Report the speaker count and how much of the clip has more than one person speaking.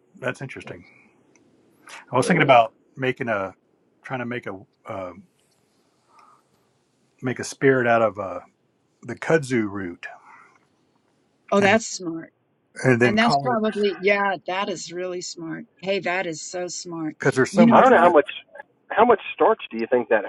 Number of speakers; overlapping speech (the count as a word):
three, about 7%